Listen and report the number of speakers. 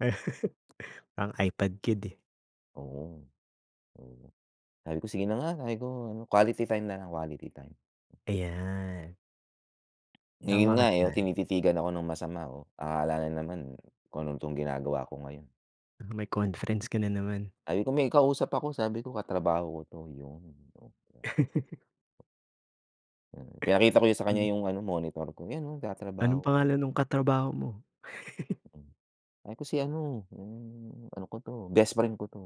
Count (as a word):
two